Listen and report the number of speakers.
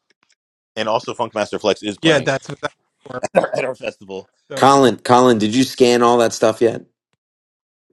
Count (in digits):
3